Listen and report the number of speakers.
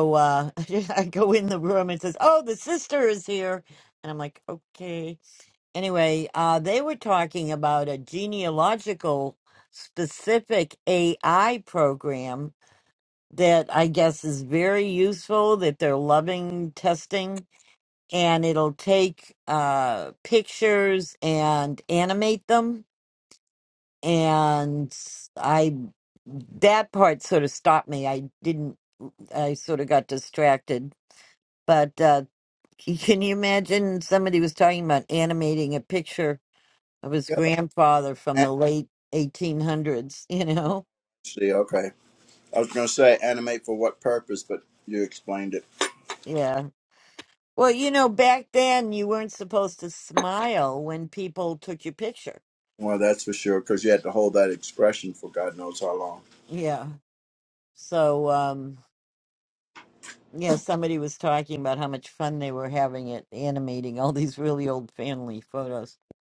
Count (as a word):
two